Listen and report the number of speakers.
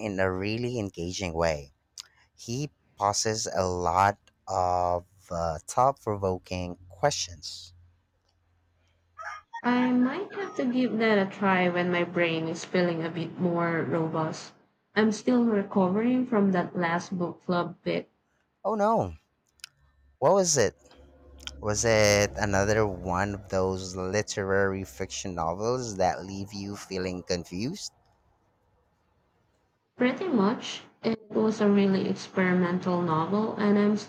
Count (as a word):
two